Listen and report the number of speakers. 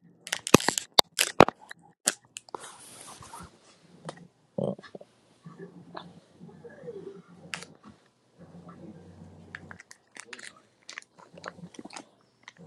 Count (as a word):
zero